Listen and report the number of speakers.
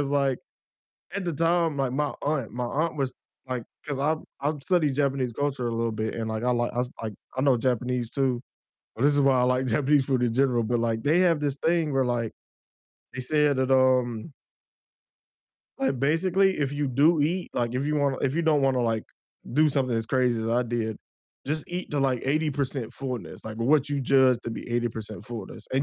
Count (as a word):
one